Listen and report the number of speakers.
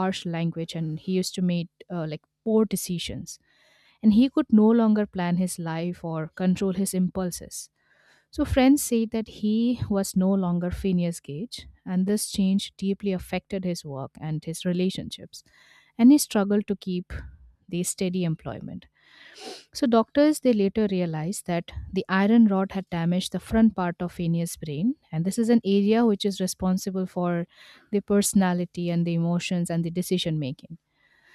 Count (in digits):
1